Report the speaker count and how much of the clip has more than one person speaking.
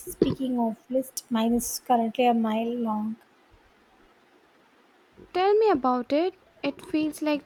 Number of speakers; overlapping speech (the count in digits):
2, no overlap